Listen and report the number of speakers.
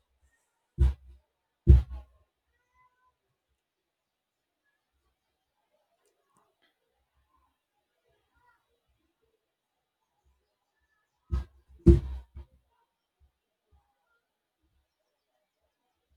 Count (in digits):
0